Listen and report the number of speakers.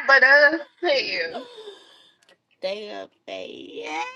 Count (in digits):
2